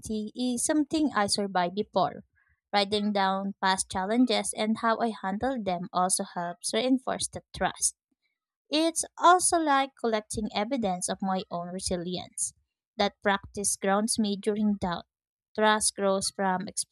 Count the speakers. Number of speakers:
1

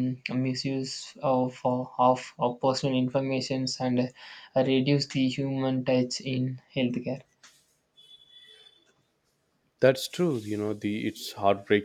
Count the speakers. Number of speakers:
2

